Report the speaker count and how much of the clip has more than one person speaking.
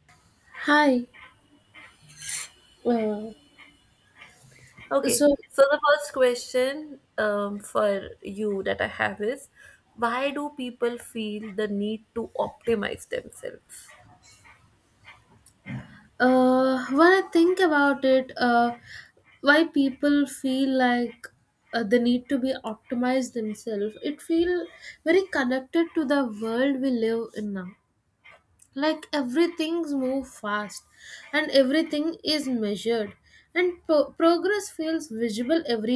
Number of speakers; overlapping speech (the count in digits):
2, about 1%